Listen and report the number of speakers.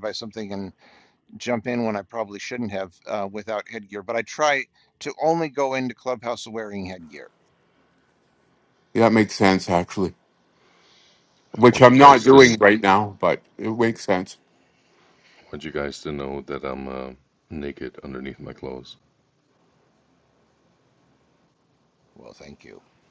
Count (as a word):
three